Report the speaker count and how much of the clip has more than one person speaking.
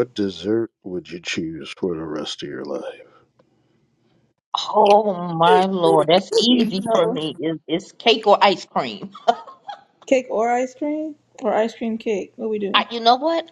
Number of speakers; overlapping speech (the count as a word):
three, about 7%